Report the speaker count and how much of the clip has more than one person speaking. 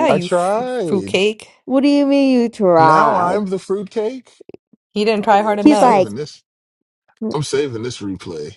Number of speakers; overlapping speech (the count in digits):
3, about 31%